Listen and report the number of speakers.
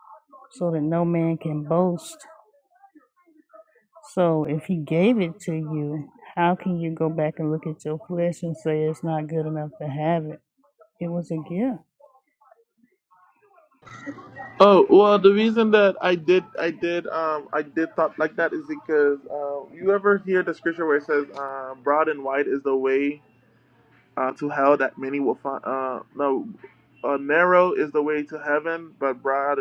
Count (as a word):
two